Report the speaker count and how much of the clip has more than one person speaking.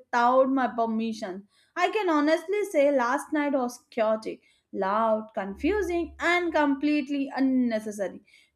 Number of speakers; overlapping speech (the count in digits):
1, no overlap